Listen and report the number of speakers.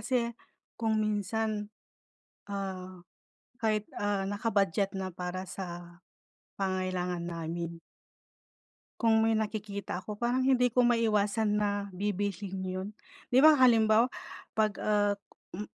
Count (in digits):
1